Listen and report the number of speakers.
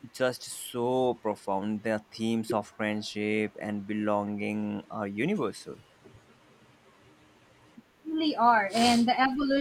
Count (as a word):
two